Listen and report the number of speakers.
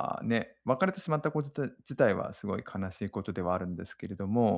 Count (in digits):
1